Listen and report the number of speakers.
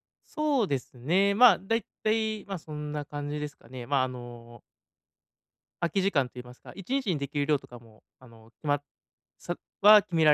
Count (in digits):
1